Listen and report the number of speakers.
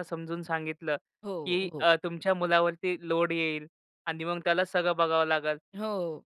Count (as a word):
two